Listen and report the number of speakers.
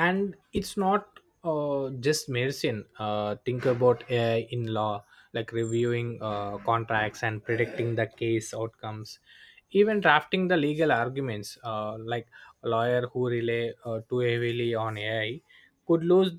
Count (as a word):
one